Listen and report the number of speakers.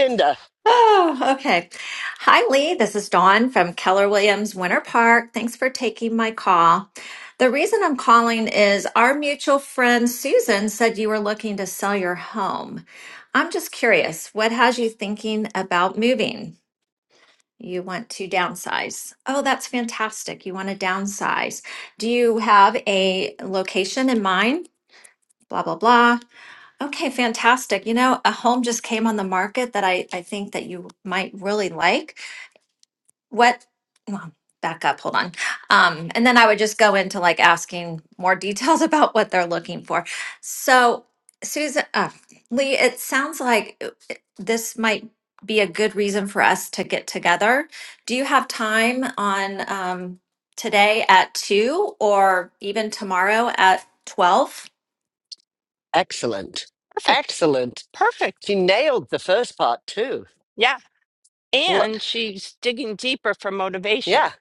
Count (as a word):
three